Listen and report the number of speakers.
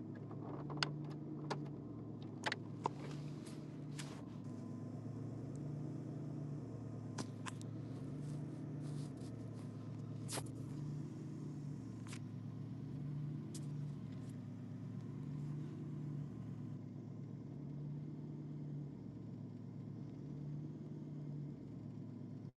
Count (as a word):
zero